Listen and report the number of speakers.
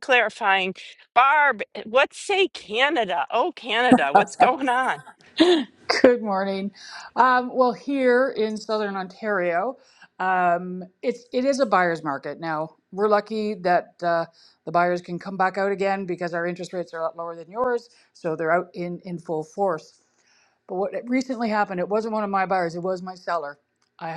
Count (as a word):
two